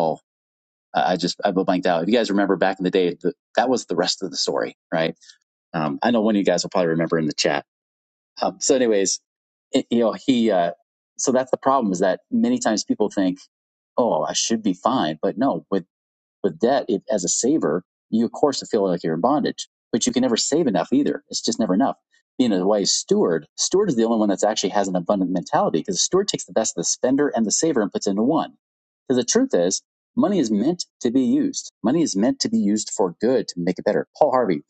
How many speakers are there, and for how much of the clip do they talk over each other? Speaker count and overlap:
one, no overlap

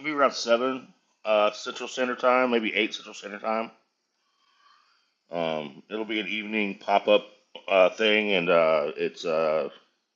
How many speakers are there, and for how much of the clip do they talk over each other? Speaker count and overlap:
one, no overlap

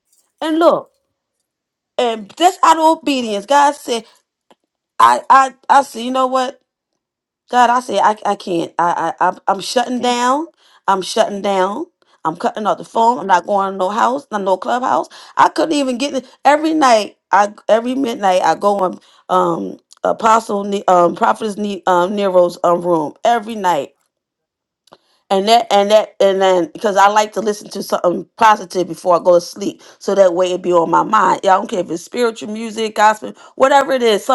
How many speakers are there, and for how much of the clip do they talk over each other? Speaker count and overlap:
one, no overlap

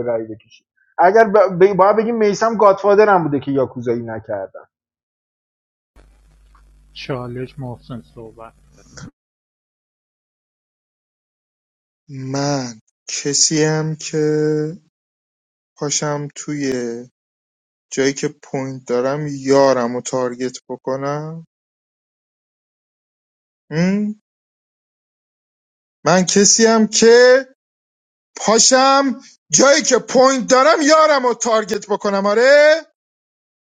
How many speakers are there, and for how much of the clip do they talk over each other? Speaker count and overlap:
three, no overlap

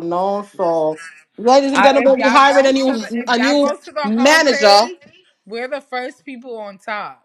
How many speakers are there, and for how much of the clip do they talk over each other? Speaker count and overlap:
two, about 43%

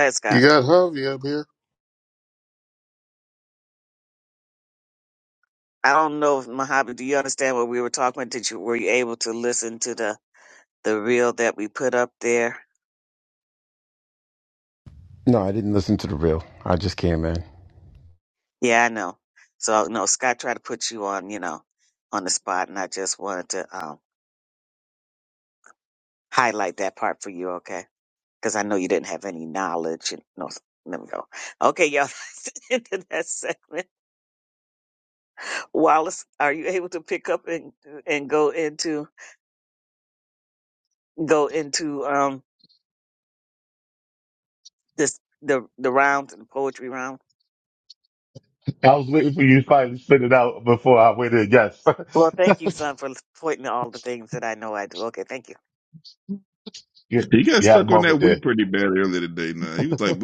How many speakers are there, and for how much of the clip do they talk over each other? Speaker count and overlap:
five, about 1%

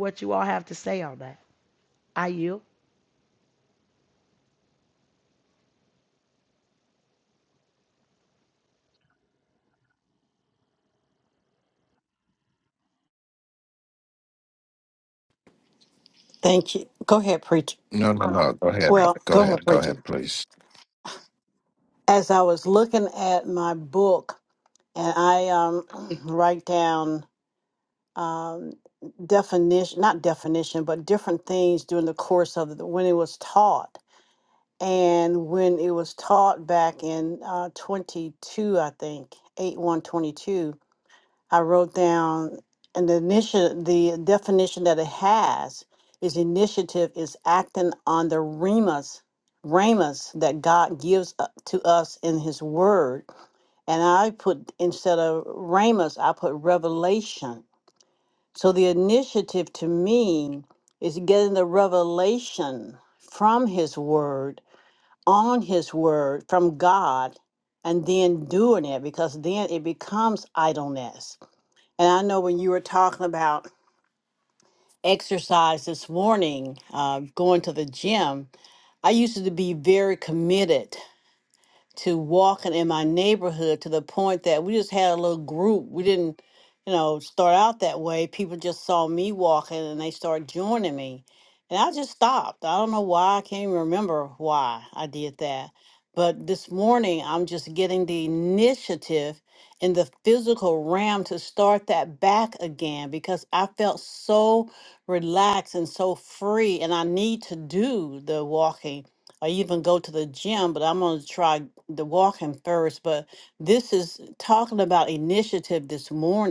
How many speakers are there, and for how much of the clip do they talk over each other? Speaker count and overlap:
three, about 1%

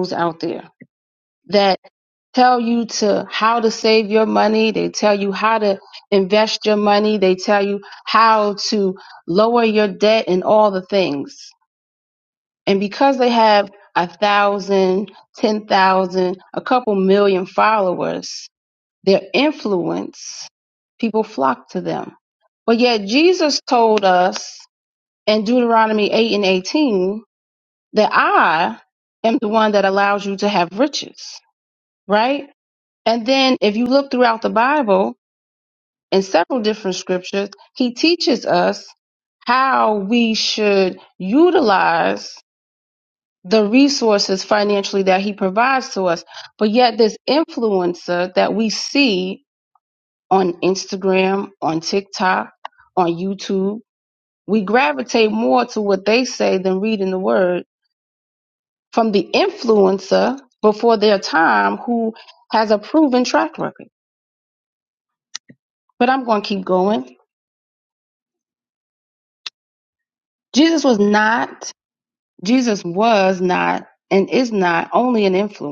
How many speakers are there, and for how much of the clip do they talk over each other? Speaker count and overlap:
one, no overlap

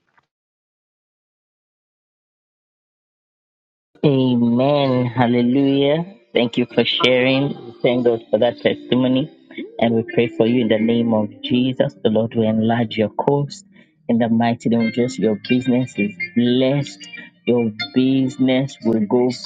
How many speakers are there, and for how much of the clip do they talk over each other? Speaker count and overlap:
one, no overlap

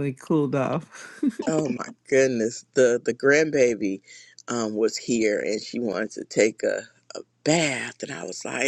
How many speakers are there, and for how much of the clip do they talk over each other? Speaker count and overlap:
two, no overlap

